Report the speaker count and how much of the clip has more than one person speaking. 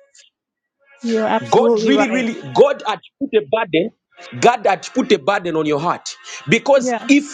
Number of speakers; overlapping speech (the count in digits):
2, about 17%